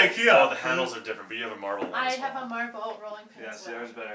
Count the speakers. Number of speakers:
3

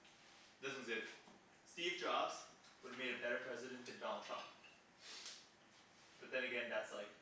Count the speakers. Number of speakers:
1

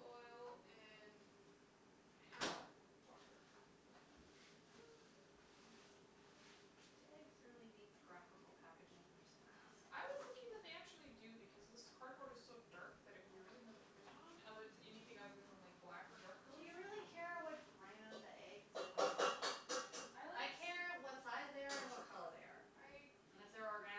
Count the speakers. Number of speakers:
2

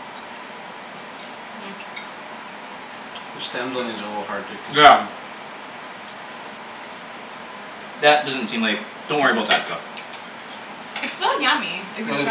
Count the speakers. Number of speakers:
3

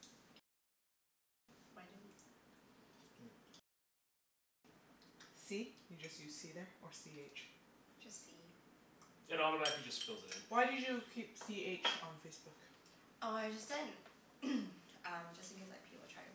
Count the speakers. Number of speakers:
3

